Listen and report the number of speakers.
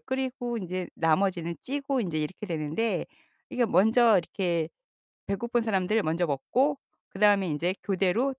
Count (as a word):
one